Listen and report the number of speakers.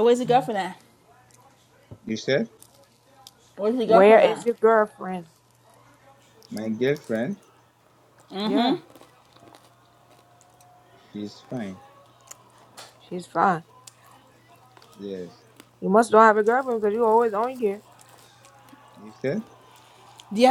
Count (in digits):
3